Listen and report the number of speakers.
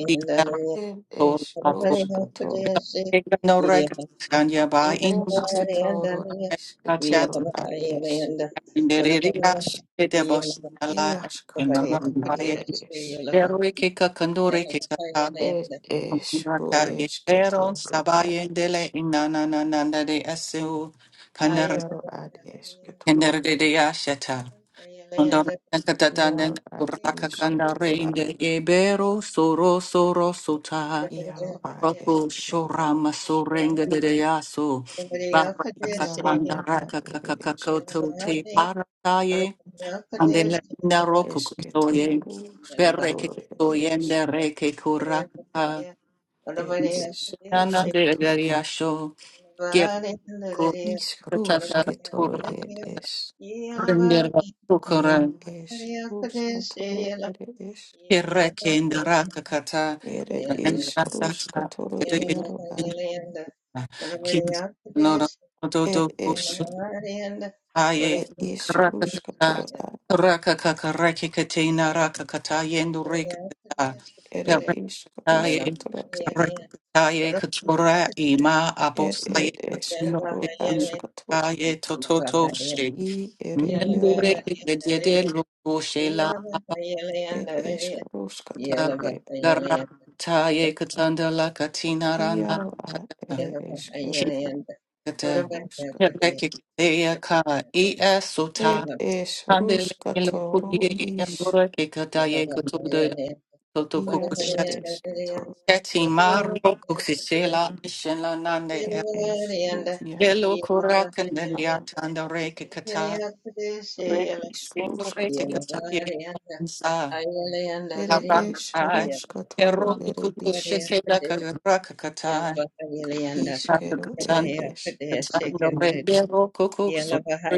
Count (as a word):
three